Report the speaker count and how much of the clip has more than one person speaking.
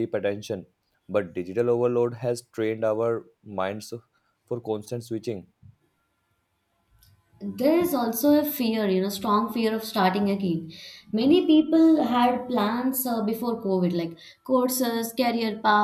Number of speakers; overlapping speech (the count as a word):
two, no overlap